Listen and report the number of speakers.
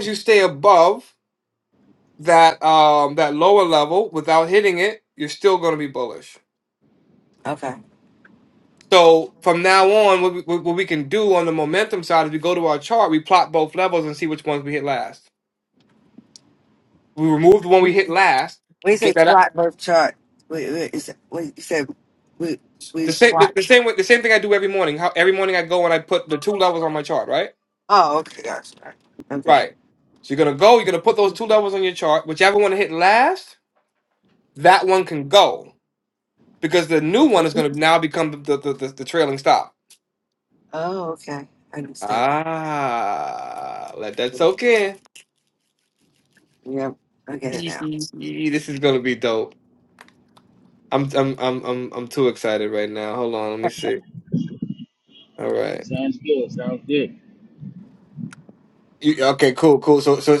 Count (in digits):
3